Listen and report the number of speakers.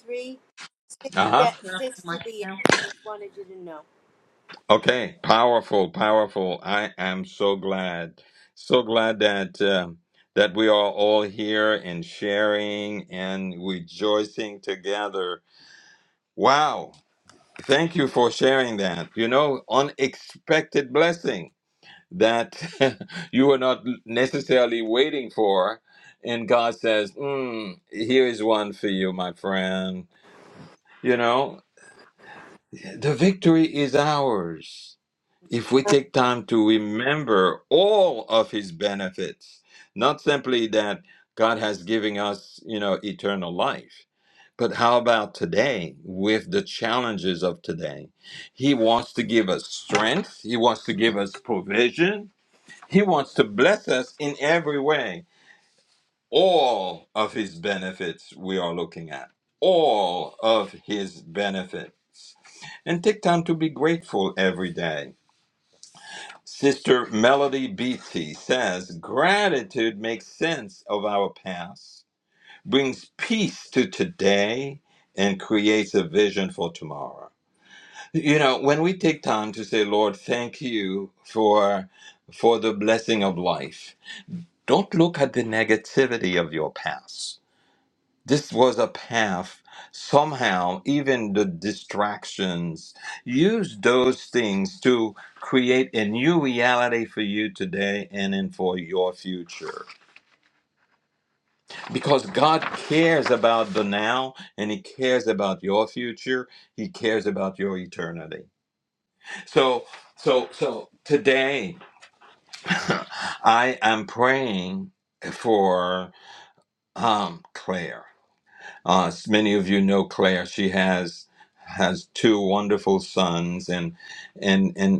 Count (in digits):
2